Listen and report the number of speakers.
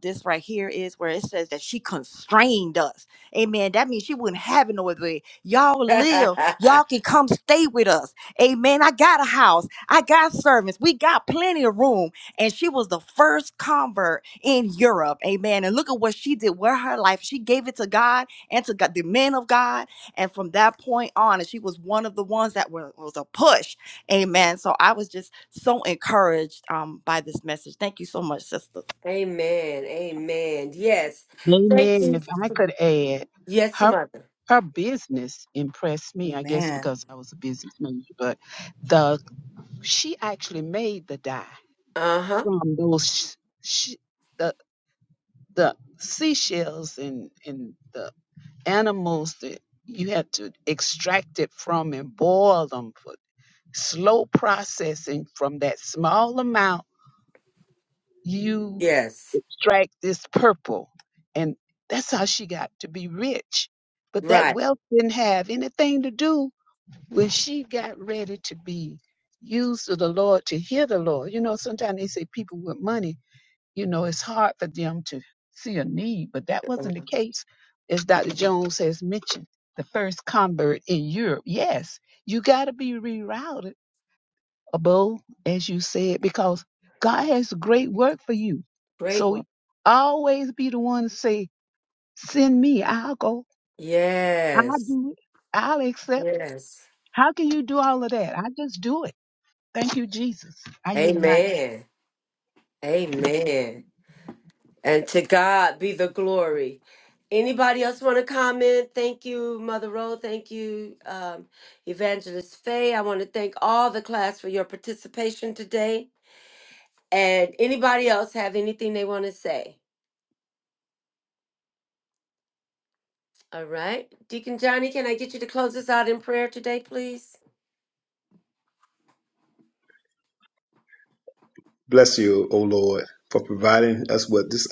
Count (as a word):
four